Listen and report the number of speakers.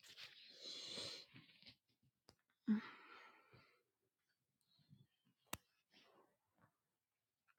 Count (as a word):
zero